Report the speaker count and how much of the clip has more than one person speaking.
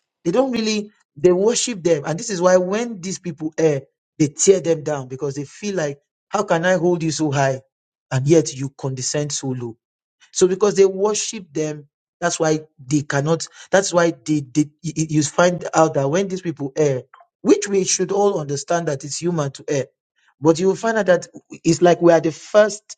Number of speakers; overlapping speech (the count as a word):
one, no overlap